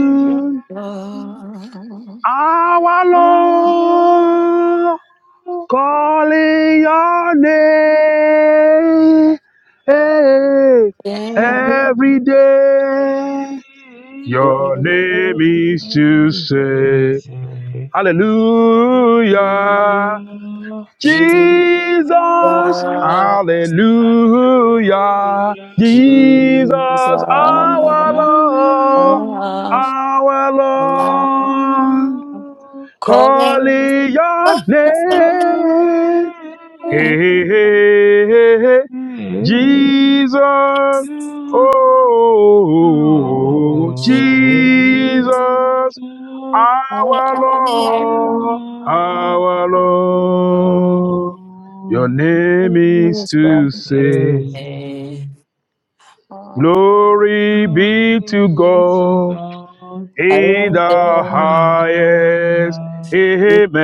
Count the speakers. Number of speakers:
three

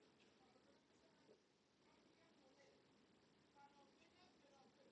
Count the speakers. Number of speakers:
zero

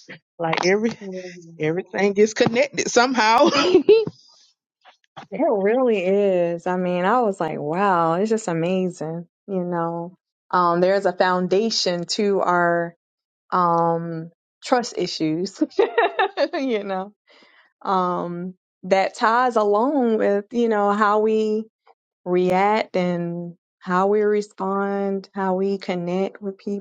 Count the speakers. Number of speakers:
two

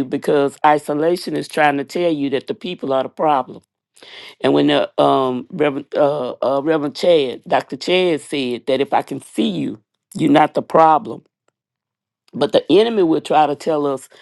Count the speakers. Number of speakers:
one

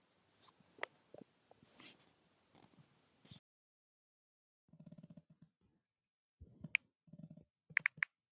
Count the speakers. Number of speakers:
zero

